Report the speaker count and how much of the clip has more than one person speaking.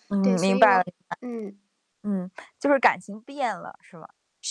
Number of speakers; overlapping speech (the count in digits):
2, about 13%